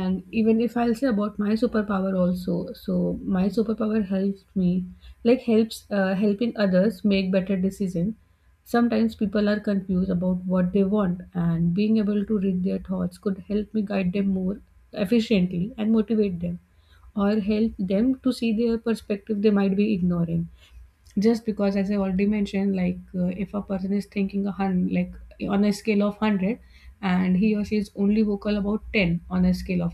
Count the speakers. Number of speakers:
one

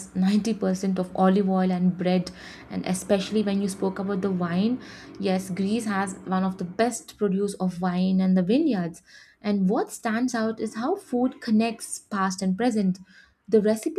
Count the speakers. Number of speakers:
one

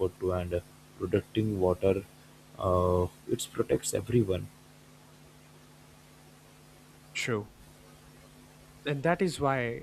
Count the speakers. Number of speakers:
two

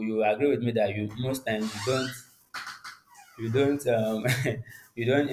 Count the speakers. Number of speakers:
one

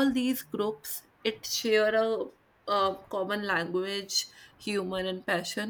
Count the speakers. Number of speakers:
one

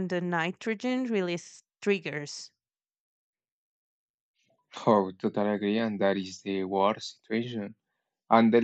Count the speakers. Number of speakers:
two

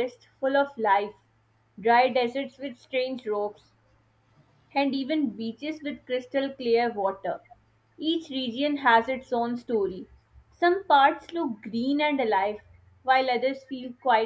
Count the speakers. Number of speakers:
one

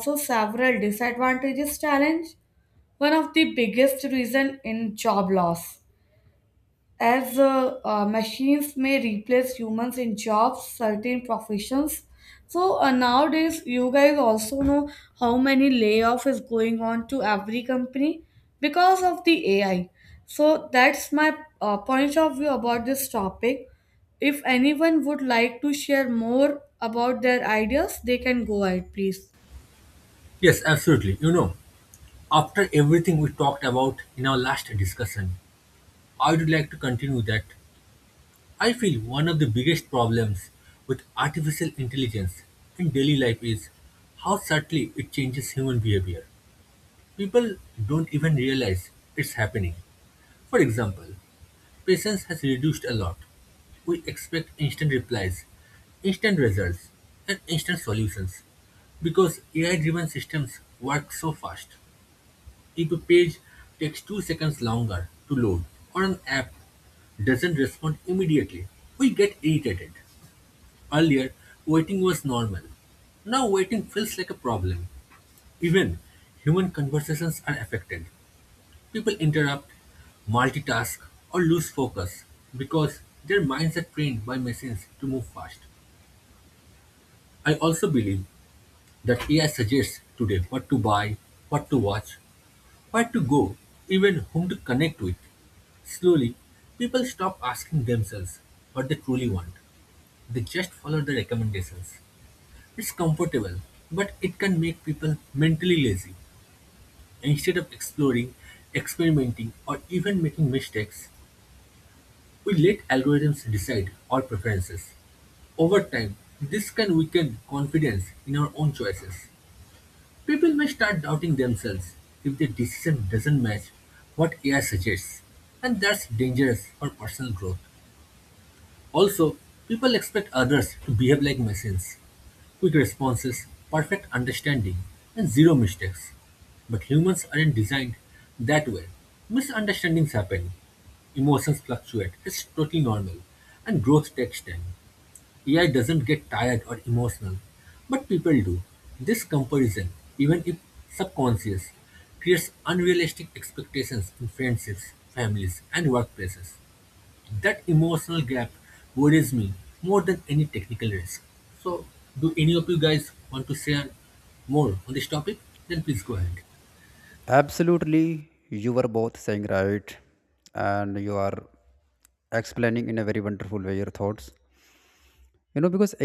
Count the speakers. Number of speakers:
three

